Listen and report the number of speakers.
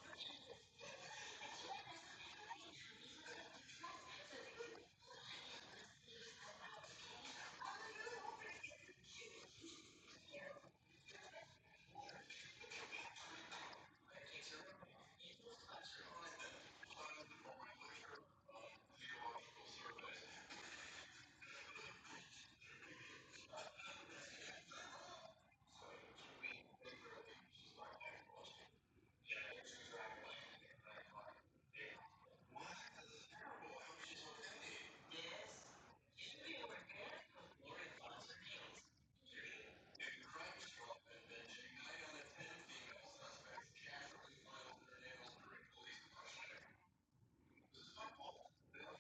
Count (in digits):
0